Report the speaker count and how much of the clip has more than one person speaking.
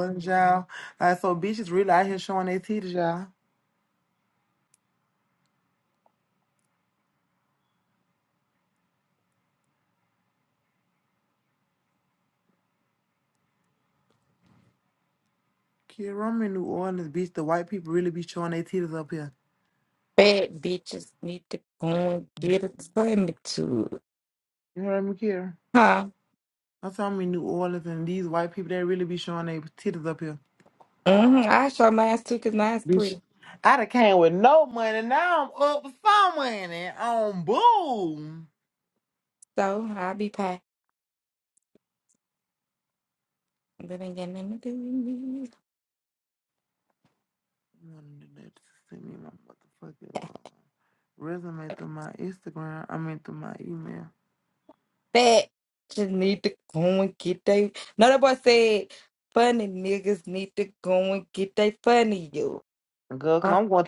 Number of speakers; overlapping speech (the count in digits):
2, about 1%